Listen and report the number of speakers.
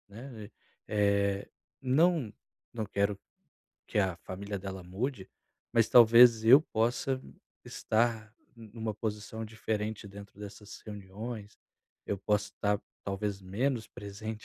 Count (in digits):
1